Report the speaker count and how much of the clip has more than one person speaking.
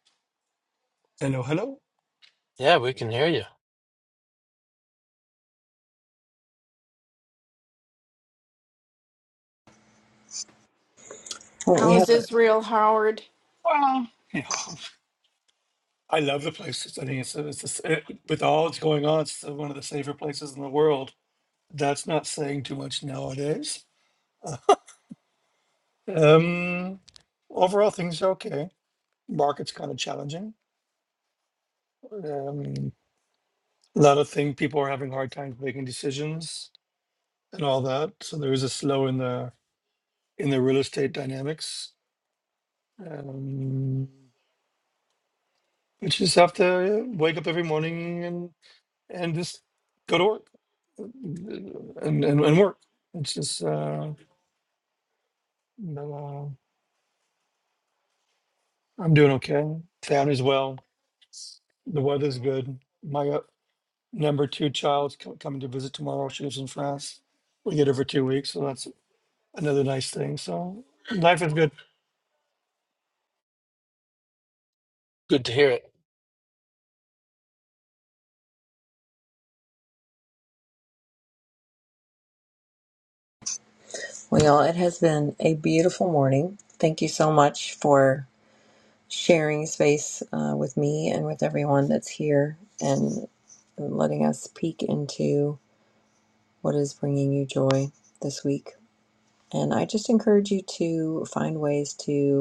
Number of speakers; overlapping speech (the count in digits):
4, under 1%